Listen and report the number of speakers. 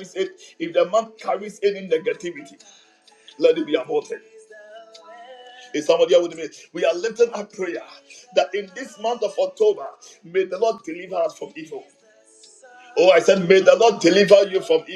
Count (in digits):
1